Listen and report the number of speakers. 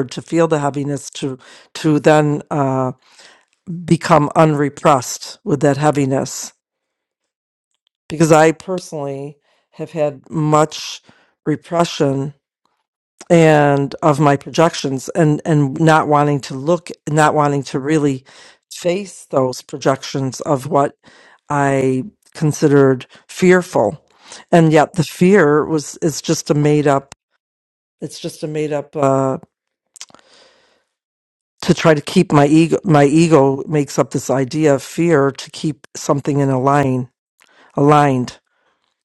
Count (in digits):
1